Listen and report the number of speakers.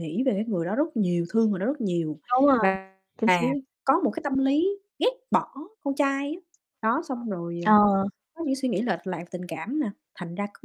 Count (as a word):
two